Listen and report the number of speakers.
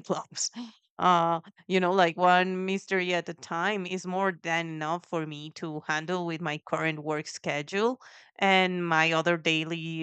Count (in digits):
1